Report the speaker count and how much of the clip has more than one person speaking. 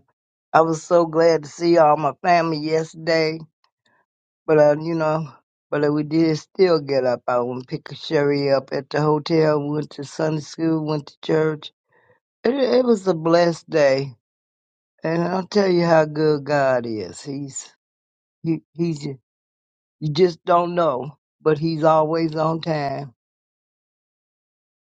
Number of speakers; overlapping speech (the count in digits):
1, no overlap